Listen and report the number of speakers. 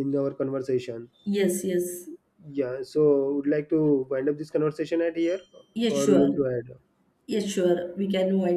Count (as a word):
two